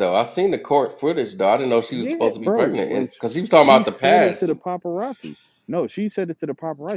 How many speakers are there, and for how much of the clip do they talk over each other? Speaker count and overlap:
2, about 33%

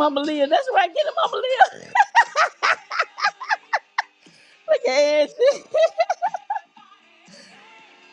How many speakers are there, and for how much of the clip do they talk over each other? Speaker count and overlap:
1, no overlap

